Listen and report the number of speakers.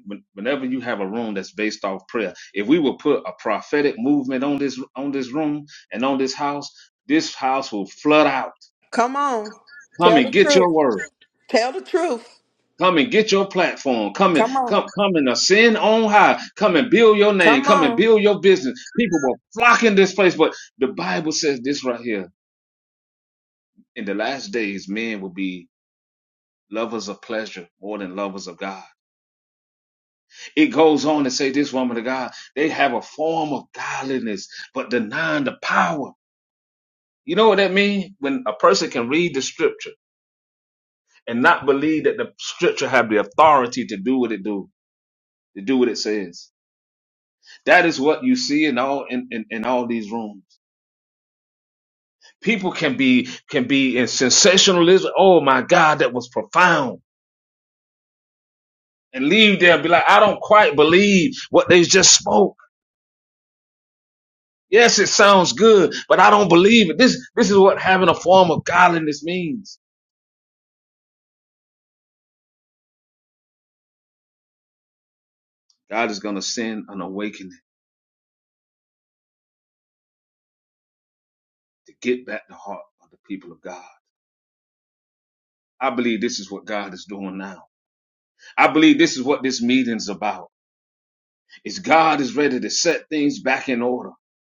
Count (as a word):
two